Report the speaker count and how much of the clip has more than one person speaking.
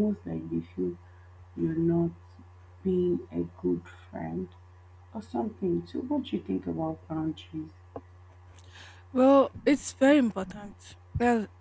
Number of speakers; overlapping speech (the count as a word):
two, no overlap